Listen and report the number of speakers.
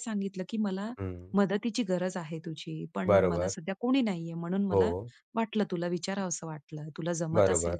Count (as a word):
two